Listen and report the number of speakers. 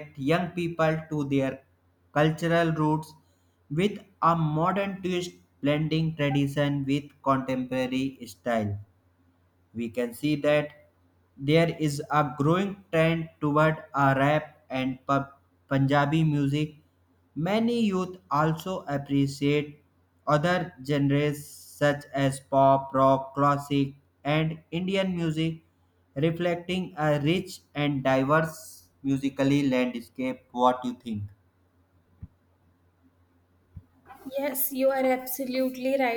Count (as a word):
two